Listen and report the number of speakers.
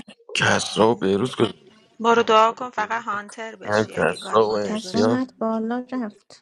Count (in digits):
3